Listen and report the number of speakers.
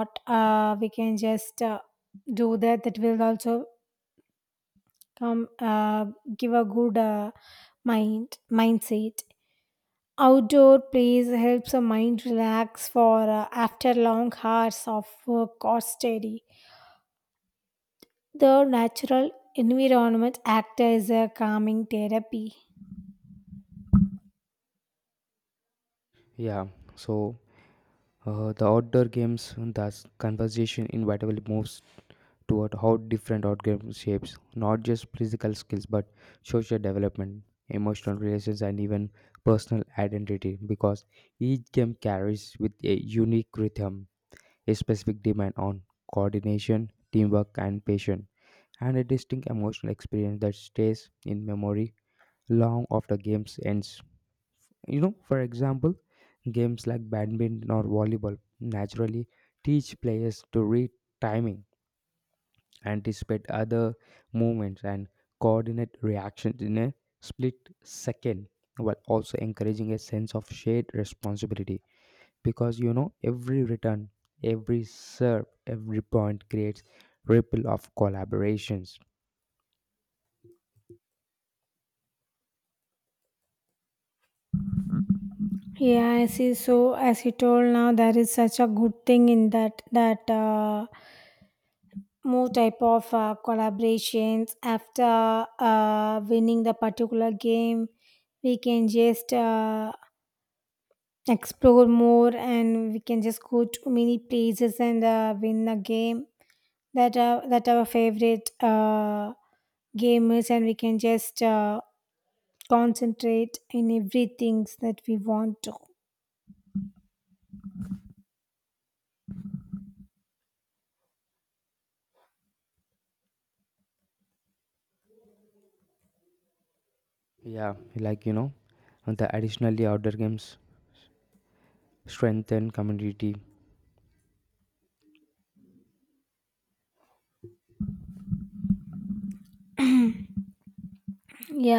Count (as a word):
two